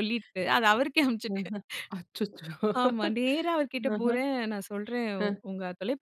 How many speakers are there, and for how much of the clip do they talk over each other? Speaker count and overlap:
2, about 10%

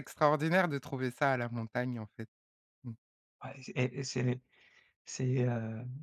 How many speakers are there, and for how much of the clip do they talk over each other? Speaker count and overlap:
2, no overlap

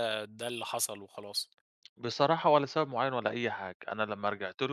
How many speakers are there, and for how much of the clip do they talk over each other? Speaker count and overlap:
2, no overlap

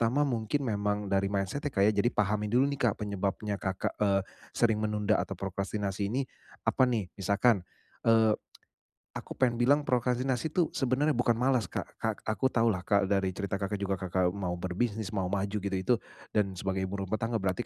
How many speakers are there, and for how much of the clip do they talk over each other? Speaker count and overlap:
1, no overlap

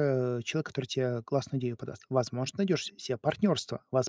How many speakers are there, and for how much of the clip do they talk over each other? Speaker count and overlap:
1, no overlap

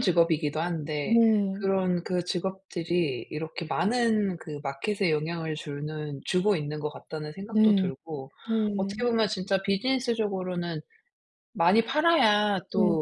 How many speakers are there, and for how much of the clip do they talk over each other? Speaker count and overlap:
2, about 10%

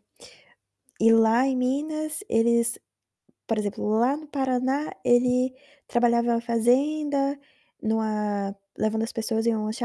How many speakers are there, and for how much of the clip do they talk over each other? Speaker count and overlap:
1, no overlap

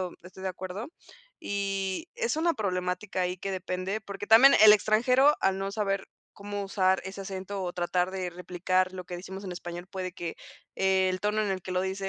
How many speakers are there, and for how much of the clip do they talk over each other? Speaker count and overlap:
1, no overlap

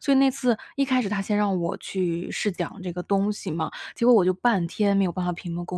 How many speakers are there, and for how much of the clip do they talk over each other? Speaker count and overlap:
1, no overlap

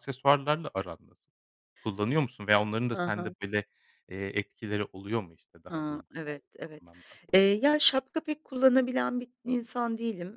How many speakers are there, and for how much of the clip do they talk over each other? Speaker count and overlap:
2, about 6%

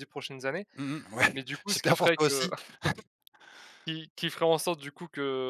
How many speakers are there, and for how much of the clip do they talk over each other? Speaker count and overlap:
2, about 21%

